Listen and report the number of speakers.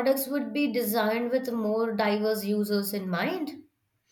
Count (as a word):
one